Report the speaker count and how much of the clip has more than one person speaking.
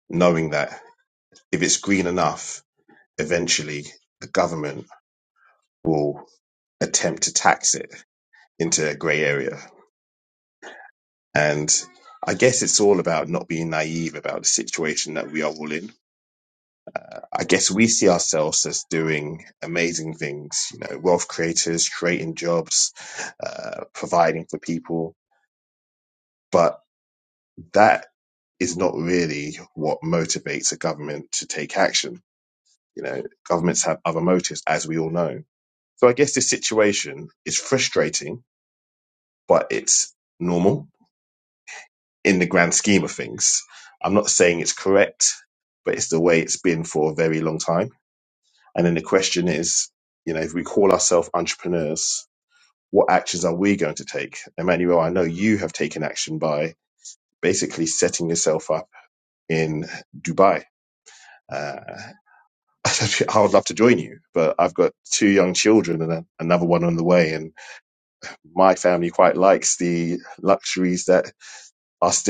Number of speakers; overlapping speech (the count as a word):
one, no overlap